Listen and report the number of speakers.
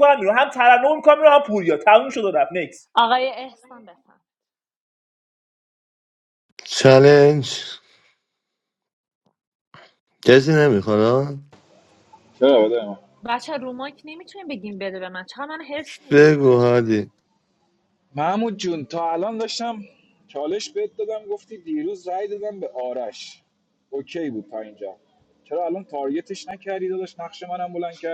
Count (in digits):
4